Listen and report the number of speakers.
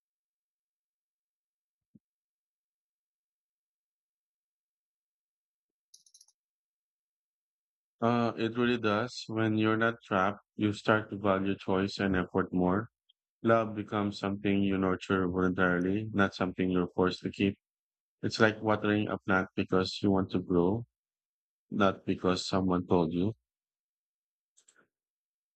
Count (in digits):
1